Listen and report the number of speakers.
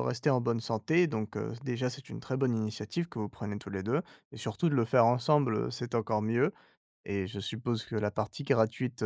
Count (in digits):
1